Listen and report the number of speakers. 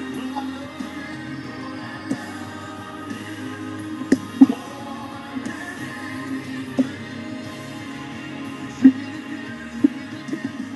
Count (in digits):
0